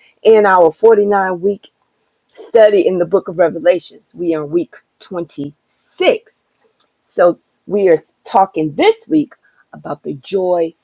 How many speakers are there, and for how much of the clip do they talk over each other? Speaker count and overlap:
one, no overlap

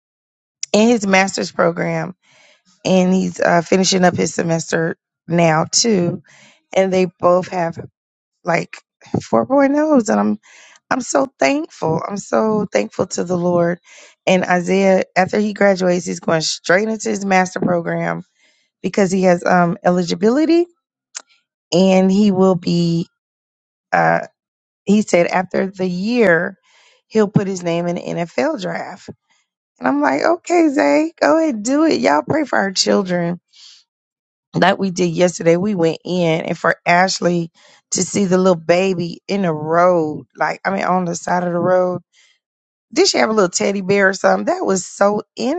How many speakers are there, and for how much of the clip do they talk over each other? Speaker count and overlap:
one, no overlap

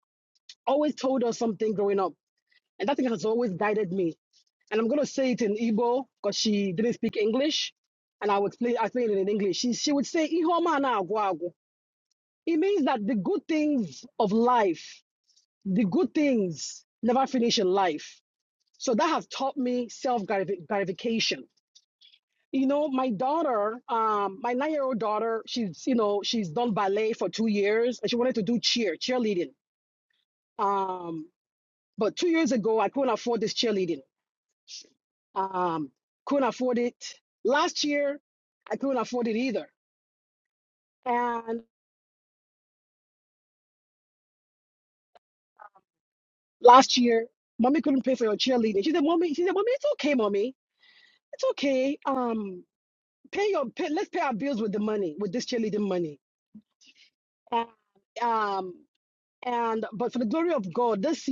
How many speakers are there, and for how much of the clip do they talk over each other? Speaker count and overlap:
one, no overlap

